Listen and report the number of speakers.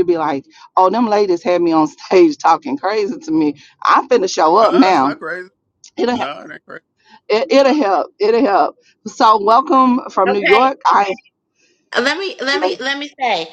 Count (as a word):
three